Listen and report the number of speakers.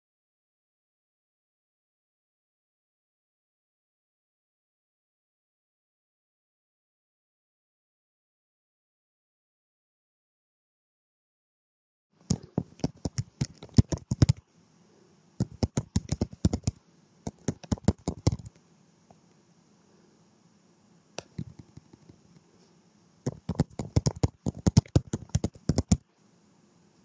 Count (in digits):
0